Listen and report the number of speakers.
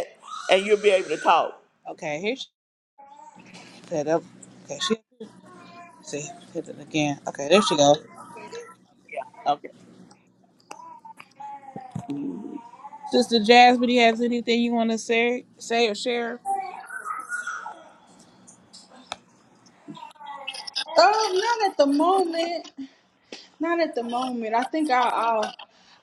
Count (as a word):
three